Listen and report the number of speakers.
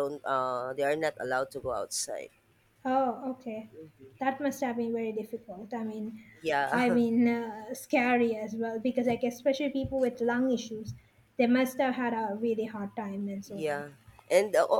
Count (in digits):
2